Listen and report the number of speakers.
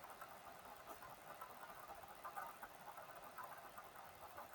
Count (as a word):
zero